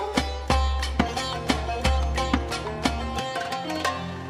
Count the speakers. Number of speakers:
0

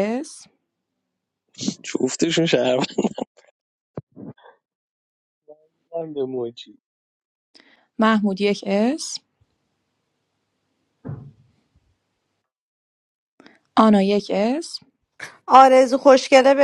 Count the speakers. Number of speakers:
3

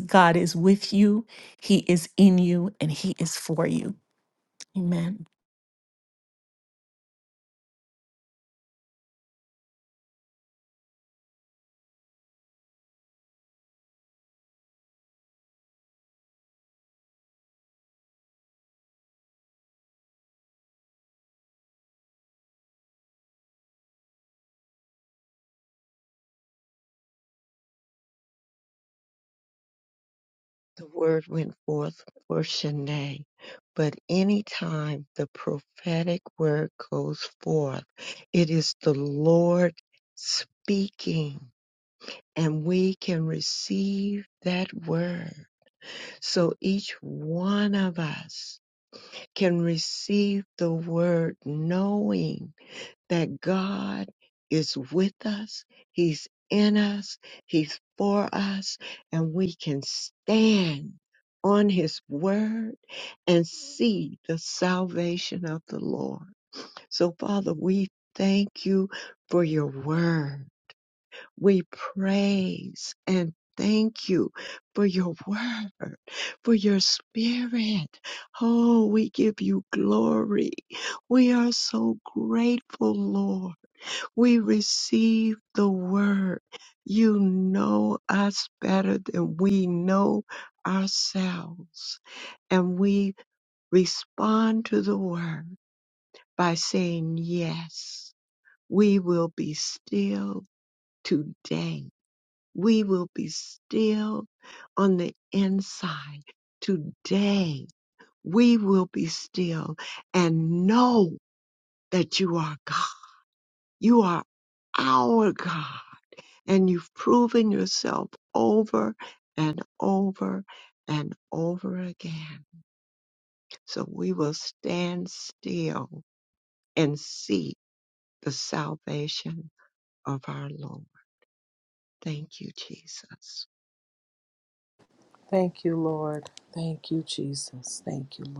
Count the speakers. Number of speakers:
3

